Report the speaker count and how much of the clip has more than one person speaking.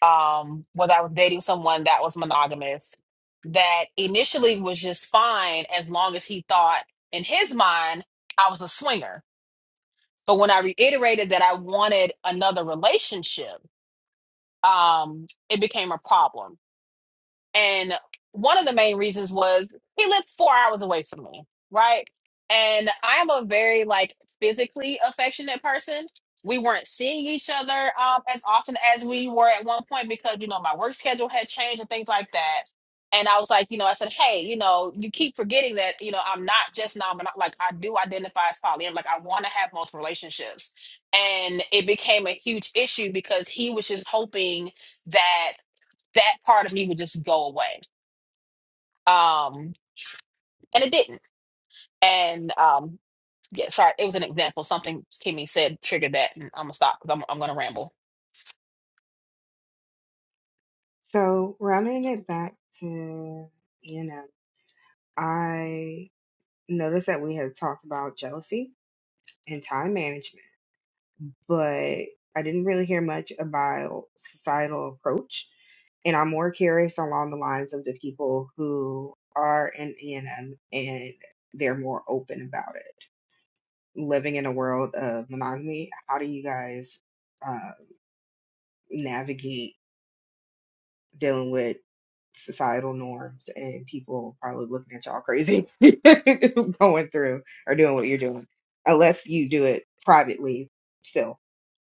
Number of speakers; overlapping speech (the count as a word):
two, no overlap